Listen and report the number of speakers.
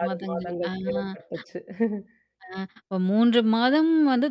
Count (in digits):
2